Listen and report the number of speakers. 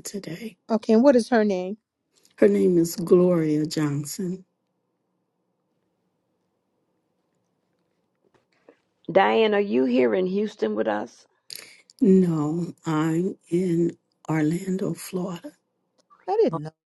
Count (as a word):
three